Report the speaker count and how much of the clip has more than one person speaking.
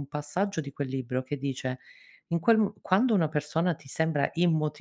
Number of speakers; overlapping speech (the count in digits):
1, no overlap